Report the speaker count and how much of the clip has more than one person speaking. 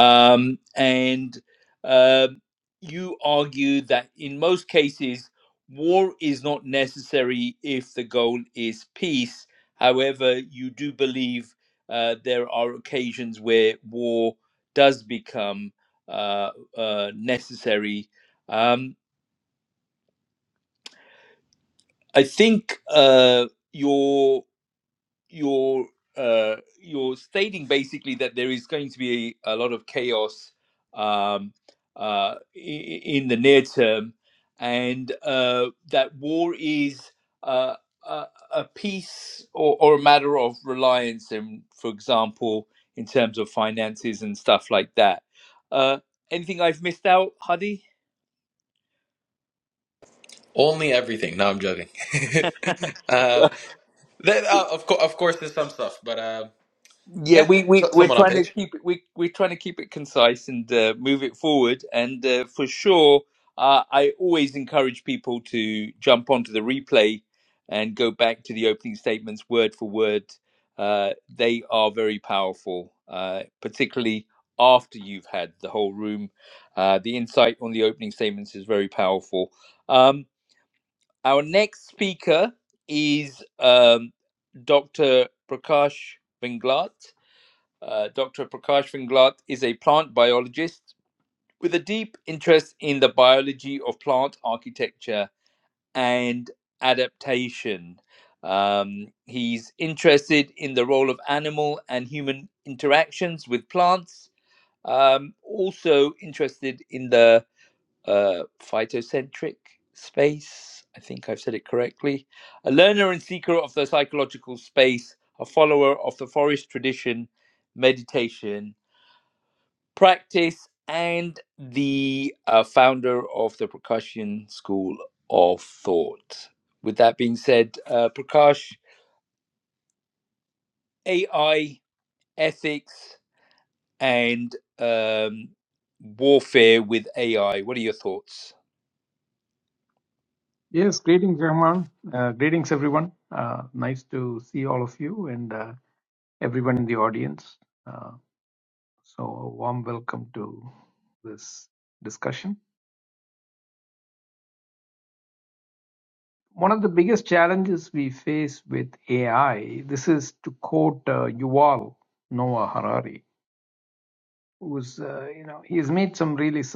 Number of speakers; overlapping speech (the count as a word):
three, about 1%